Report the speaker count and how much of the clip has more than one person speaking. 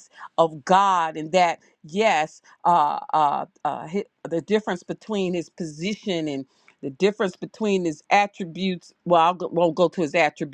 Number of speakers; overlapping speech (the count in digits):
1, no overlap